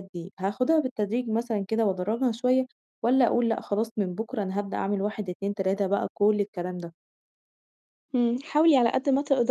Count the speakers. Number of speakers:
two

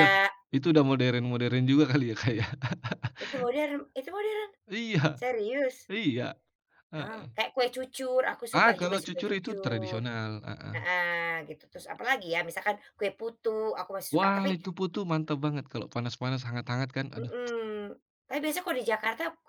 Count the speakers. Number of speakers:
two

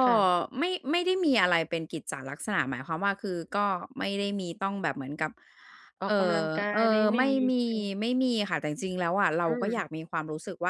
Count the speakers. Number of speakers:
two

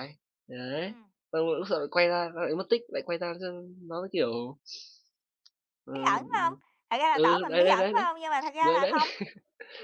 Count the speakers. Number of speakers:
two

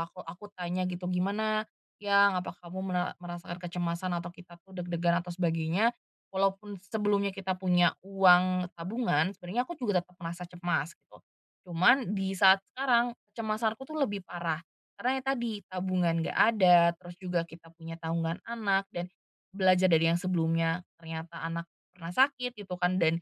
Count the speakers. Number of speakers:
one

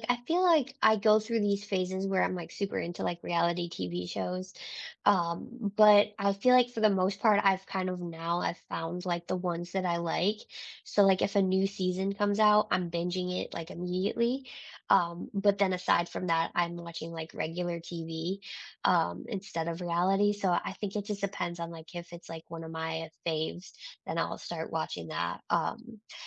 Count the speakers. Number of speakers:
one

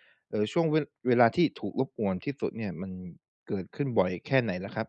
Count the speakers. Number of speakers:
one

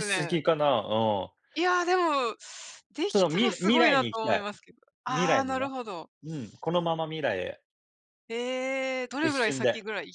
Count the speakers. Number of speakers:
two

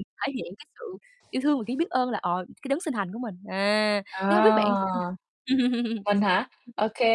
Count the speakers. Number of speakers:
two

